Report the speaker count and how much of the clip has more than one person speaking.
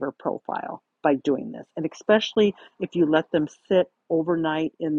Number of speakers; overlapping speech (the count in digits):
1, no overlap